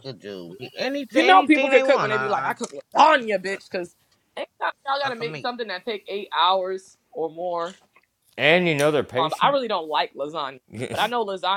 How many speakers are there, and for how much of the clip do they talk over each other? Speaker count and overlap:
3, about 18%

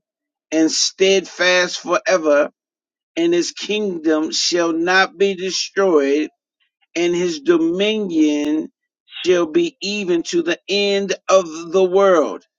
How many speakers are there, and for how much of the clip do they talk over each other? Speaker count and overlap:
1, no overlap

